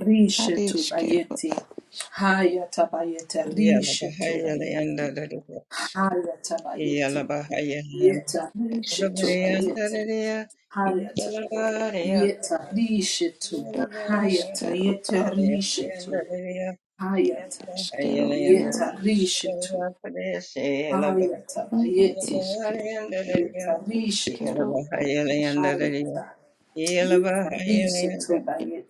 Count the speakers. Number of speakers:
three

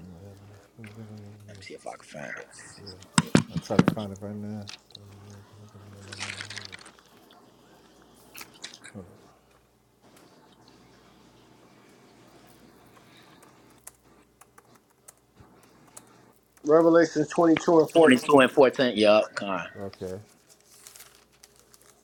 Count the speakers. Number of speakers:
three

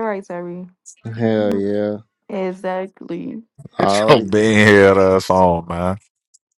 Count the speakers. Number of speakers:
three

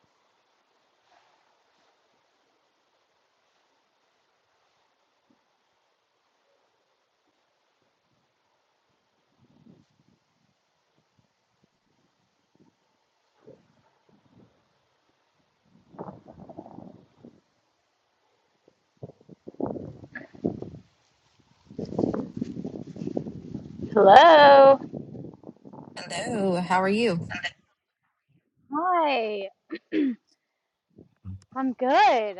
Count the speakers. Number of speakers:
two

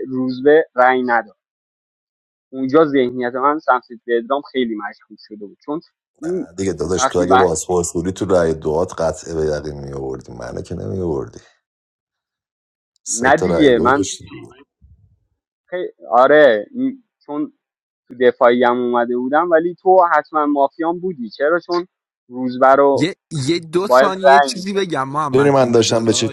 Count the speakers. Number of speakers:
three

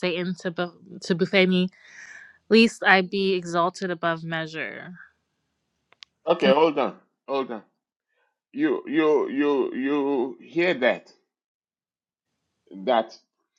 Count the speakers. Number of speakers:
two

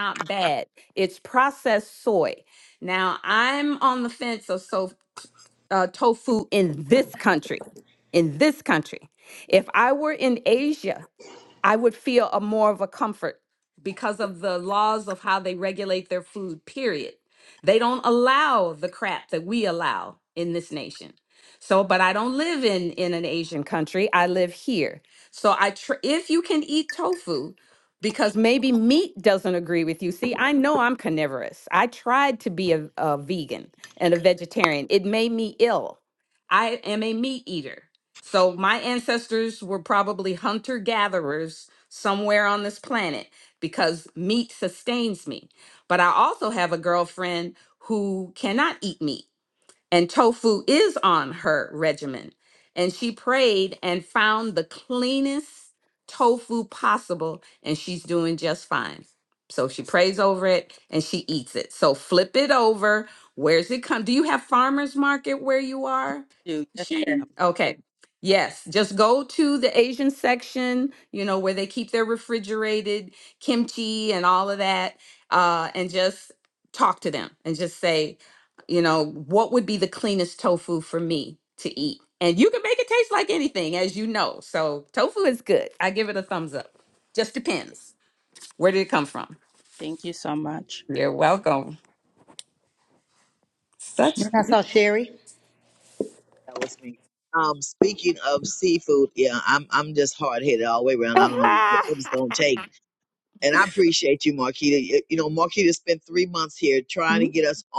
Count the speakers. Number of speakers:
four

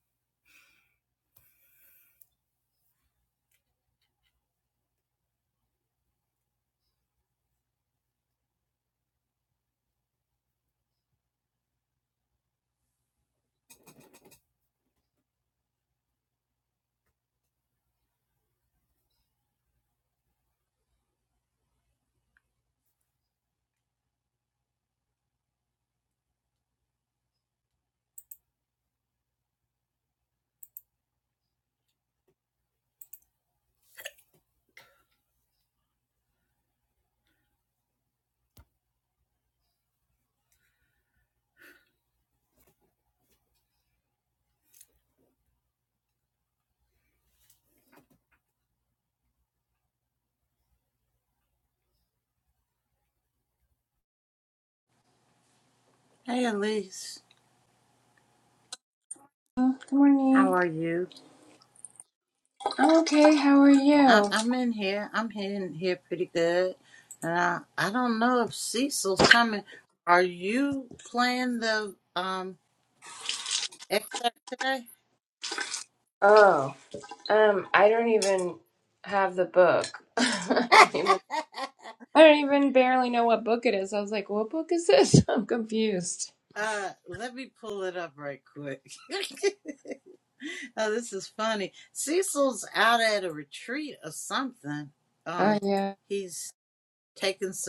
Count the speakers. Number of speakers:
two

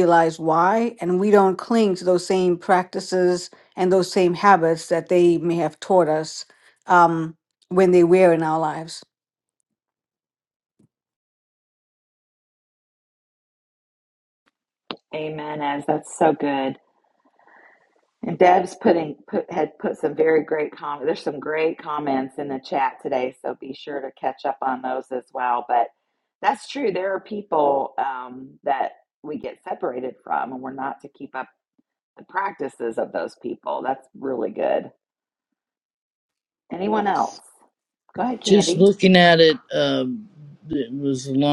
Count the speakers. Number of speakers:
three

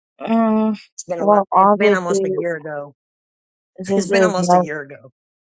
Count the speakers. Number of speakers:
two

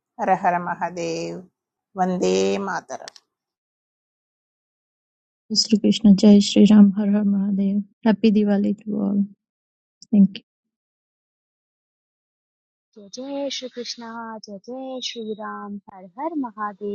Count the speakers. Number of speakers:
three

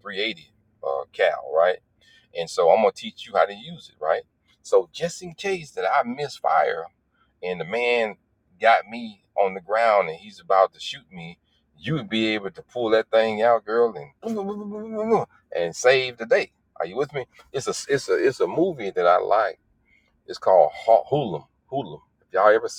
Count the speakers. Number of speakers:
one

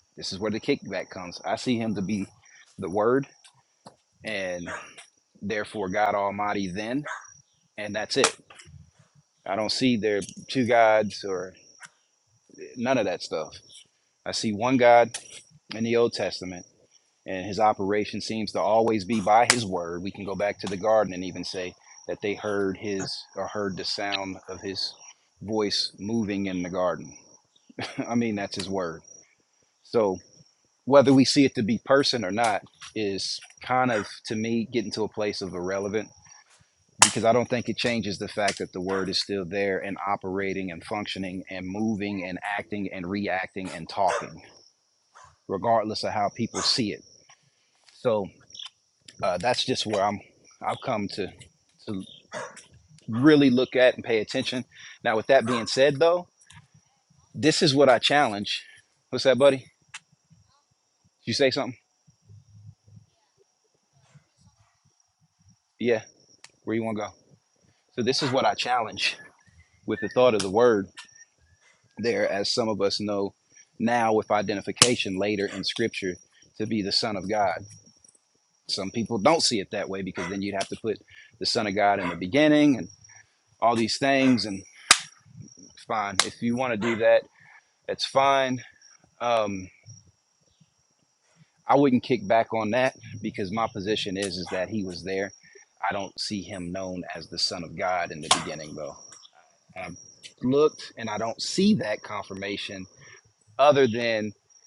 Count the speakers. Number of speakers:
one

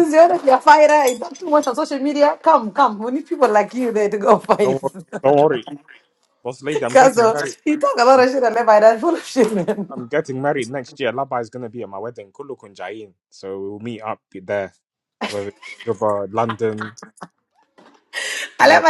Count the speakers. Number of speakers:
two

